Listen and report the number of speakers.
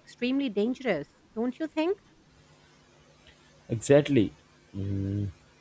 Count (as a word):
two